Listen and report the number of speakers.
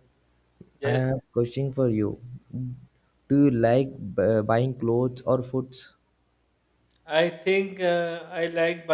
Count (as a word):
two